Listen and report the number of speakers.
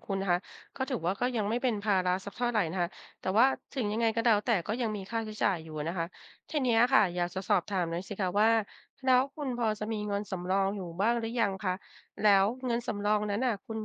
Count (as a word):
one